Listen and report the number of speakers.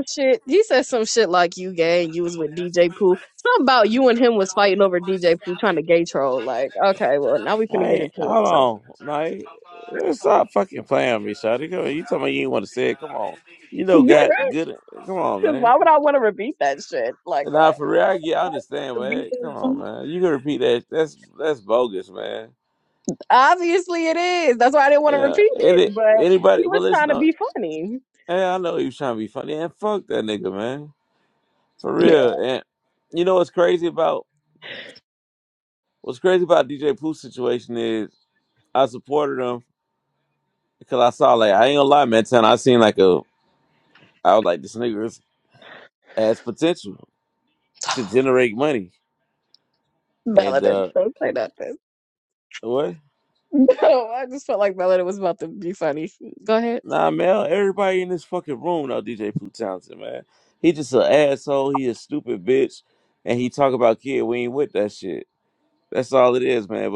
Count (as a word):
two